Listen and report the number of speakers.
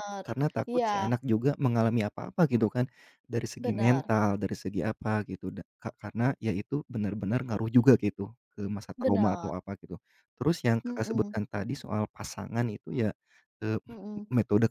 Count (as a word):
two